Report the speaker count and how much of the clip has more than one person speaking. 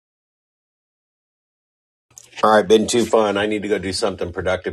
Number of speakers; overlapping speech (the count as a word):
one, no overlap